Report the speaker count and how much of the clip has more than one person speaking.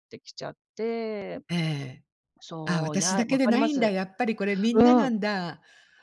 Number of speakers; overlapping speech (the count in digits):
2, about 27%